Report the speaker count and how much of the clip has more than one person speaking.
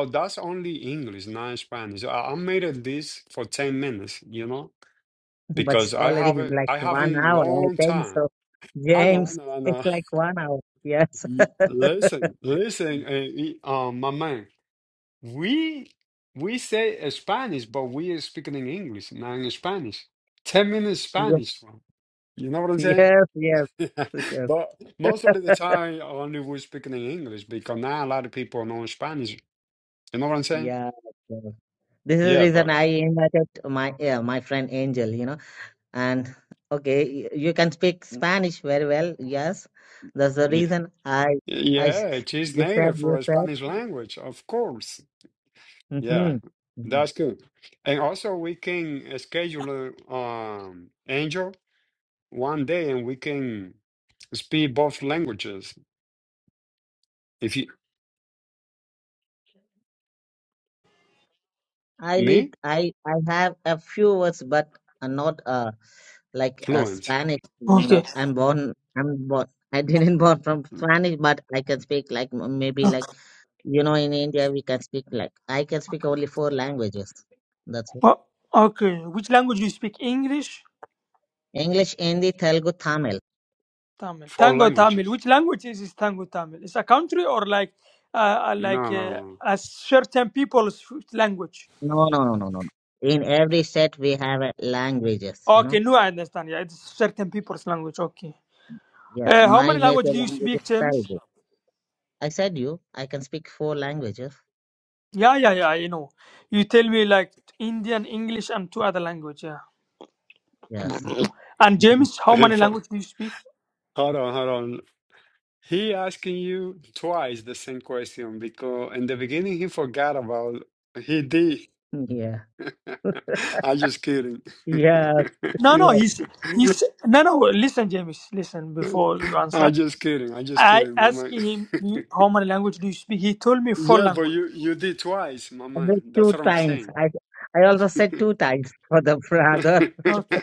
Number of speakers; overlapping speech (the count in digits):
3, about 11%